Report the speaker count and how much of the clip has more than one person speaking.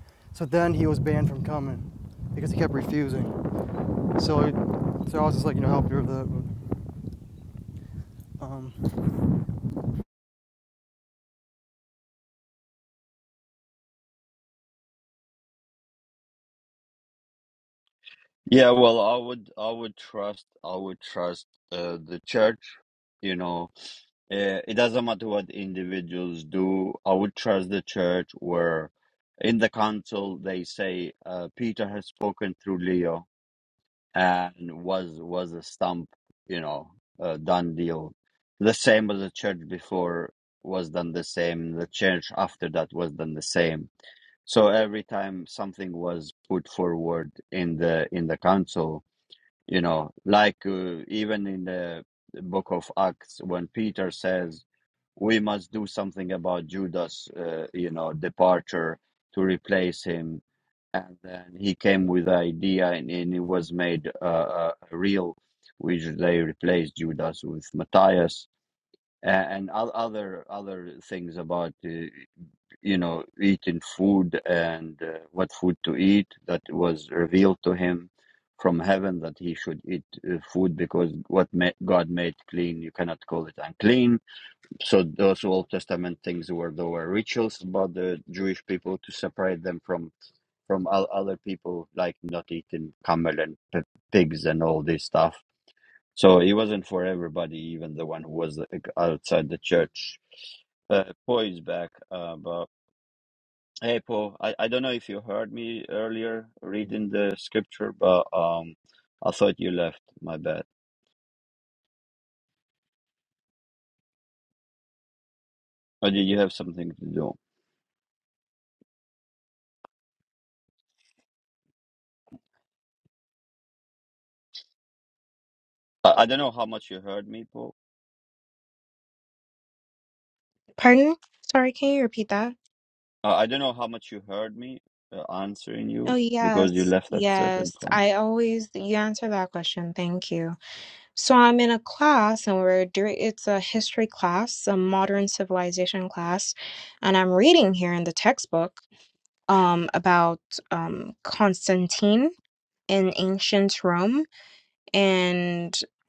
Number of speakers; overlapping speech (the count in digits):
3, about 1%